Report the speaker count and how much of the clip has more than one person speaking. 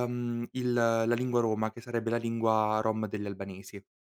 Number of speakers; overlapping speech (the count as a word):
one, no overlap